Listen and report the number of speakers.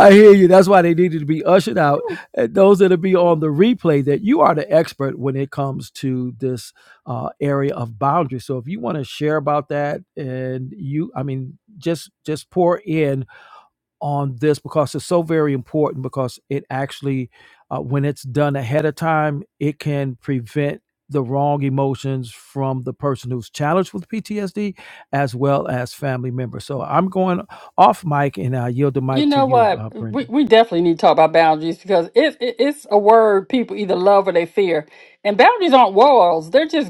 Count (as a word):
two